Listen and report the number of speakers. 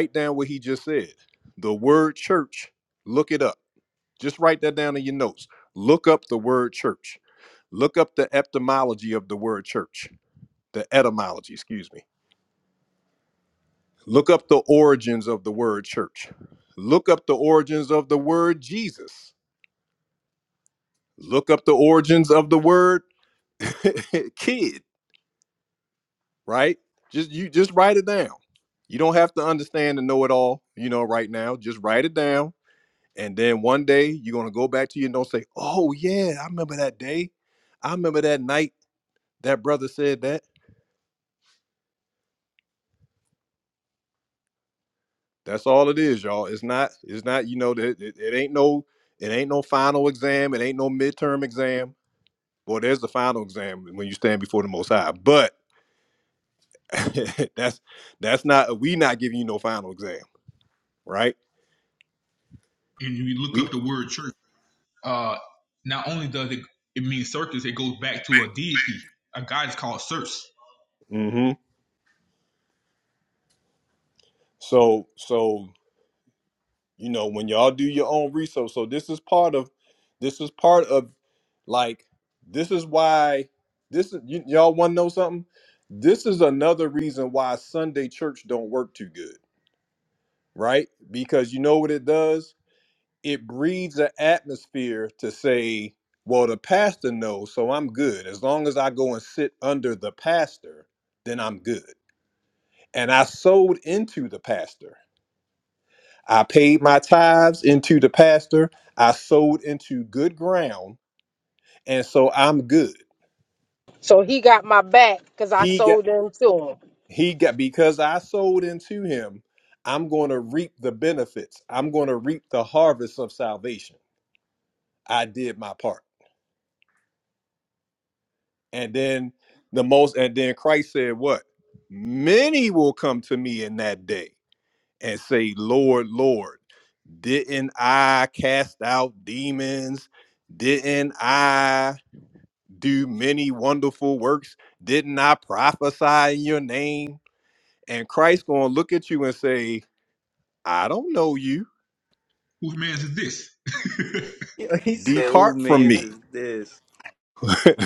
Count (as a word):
four